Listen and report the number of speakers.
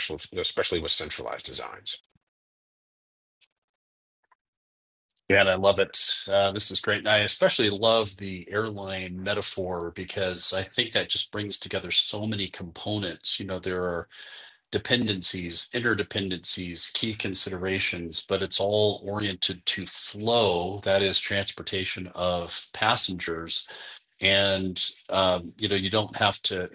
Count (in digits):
2